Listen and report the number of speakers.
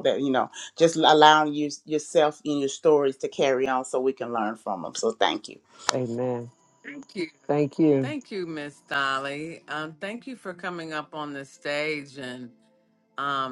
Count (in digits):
3